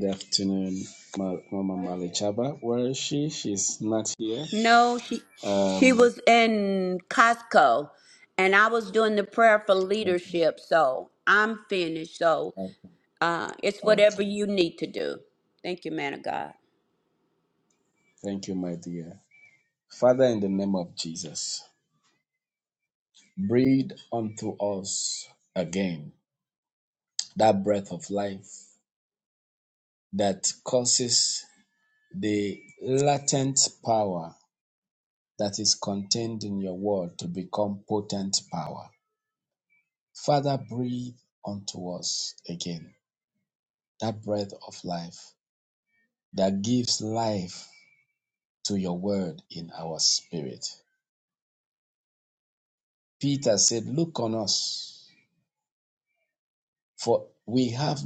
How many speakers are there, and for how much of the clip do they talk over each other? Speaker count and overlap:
2, about 2%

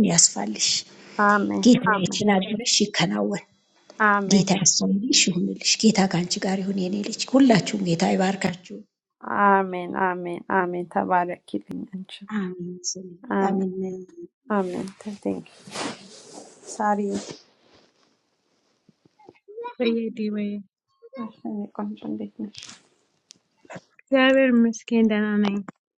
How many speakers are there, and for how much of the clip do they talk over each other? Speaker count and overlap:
3, about 3%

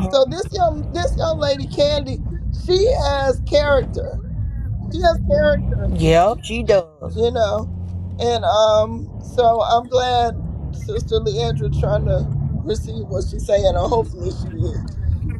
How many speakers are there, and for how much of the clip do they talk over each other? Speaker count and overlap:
2, about 1%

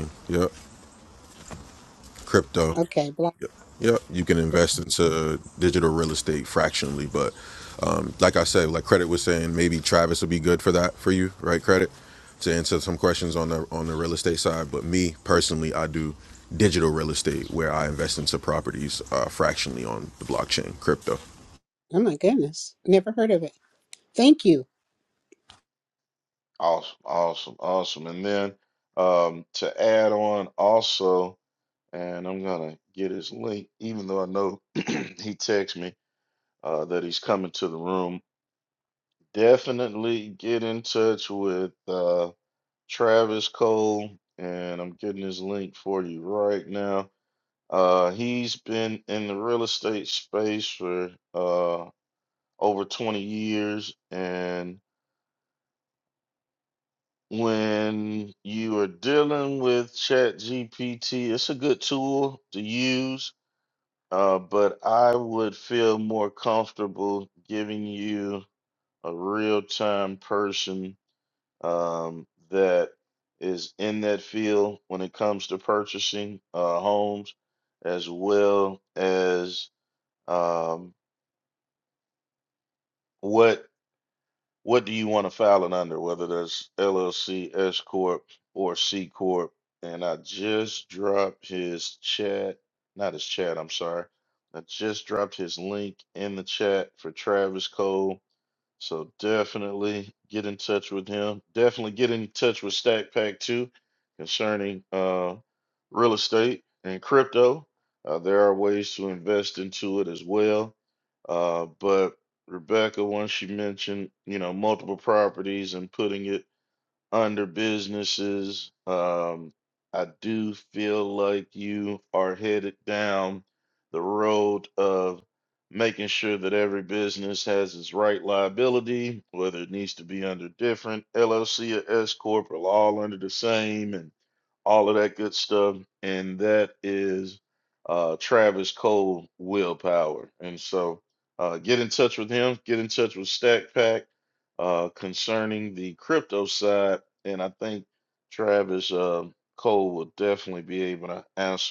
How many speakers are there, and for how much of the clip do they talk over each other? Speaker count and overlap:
3, under 1%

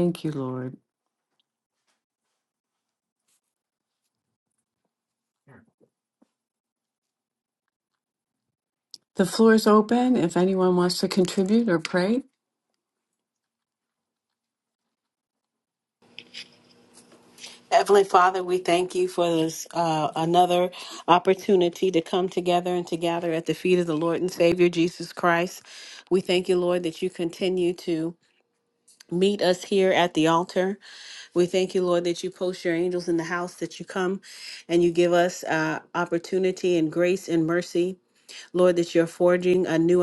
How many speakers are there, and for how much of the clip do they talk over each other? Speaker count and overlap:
2, no overlap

